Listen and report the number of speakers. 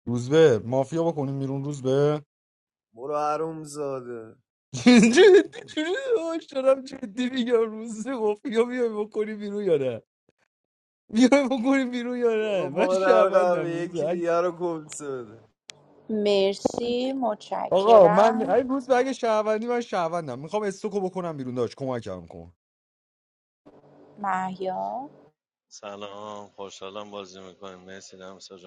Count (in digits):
4